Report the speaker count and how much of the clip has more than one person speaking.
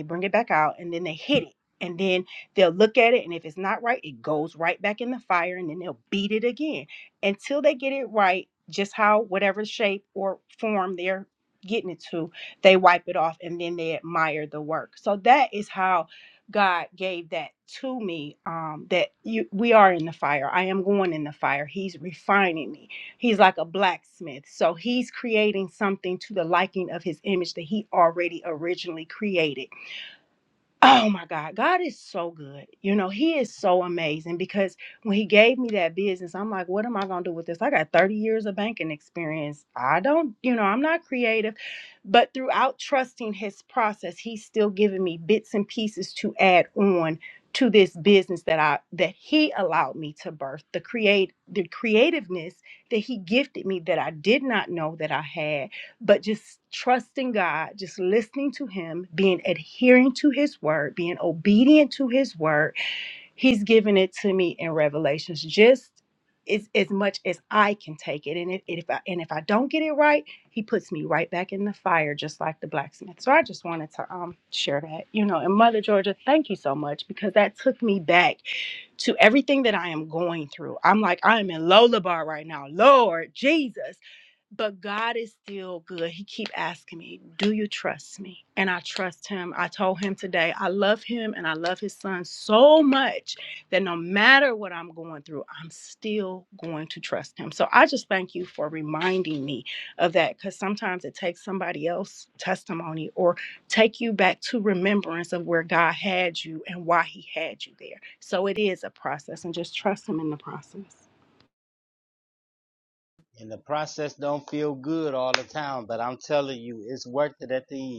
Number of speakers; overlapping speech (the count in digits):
2, no overlap